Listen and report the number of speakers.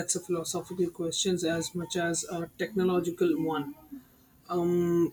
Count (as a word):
one